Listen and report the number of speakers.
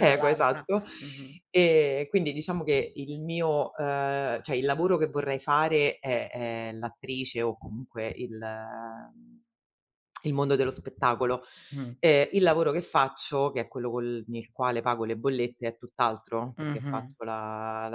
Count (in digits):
2